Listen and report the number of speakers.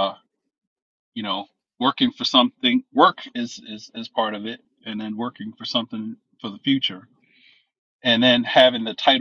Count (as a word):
one